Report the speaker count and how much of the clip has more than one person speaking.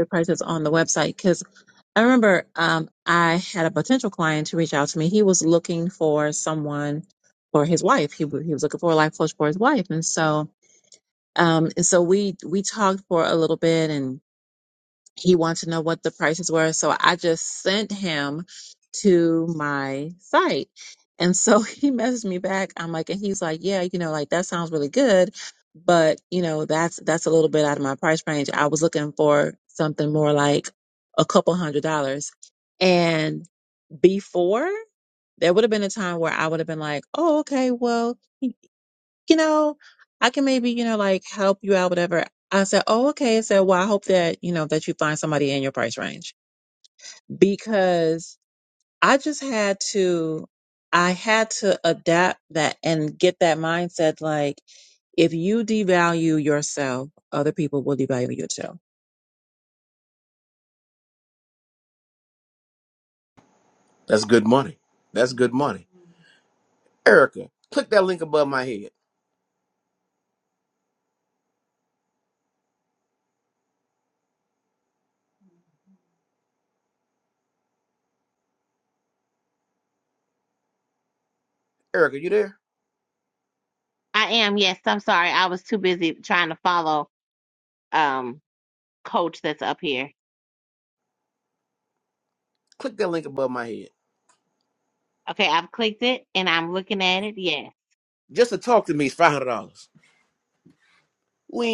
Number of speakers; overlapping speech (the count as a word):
three, no overlap